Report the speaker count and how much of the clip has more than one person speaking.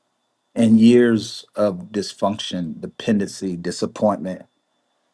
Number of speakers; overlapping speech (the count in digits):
1, no overlap